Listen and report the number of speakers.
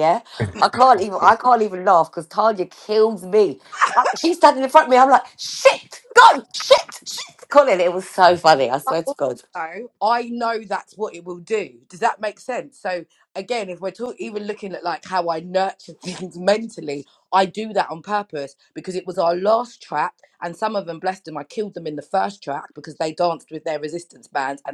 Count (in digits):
2